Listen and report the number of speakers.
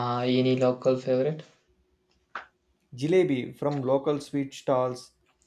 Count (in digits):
2